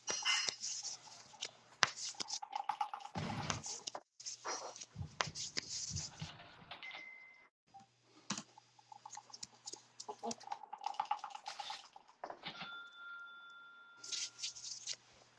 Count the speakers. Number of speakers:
zero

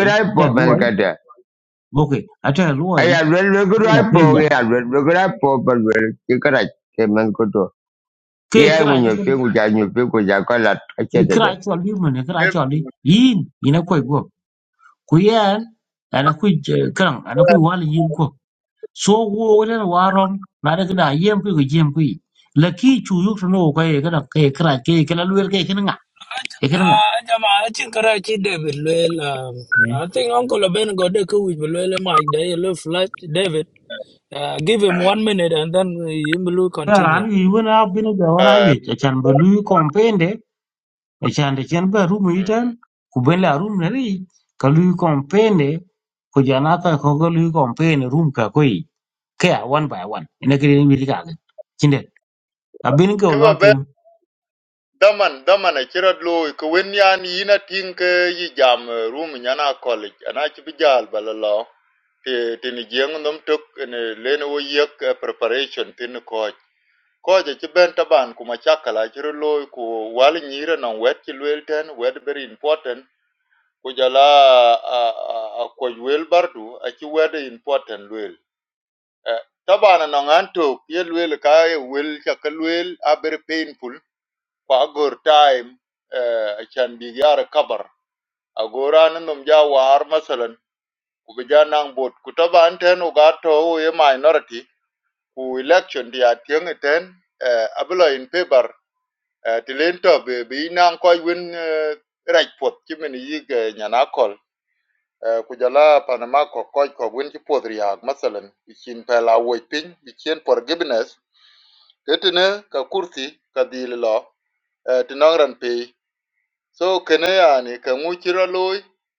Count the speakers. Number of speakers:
four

